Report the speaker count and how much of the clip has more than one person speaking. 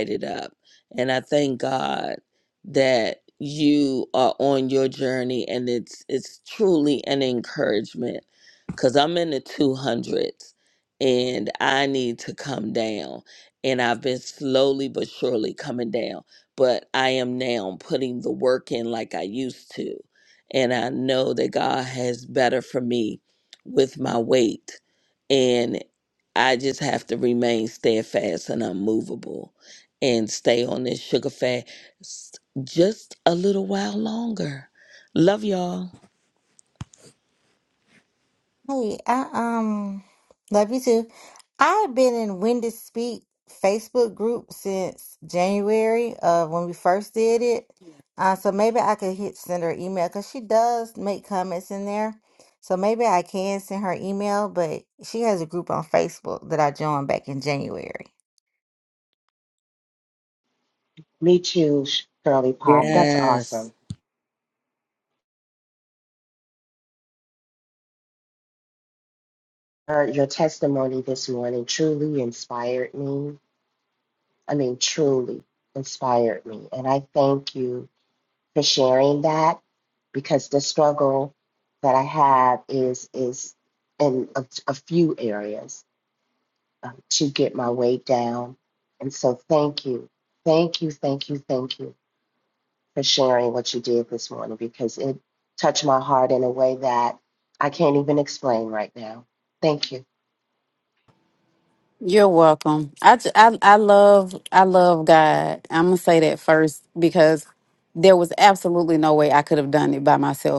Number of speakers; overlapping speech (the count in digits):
4, about 1%